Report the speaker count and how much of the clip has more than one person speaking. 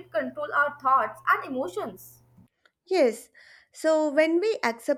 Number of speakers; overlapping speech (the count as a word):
two, no overlap